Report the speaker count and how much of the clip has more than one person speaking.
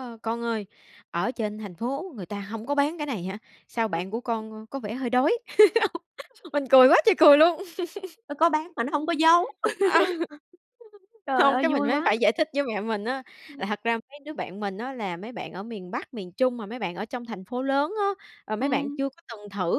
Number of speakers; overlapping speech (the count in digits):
2, about 7%